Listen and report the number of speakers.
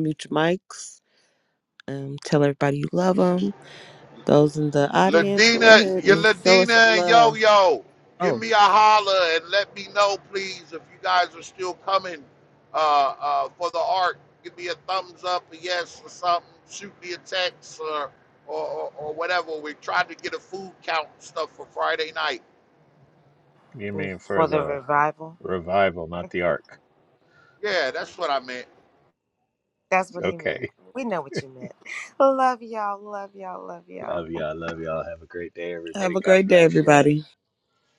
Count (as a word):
four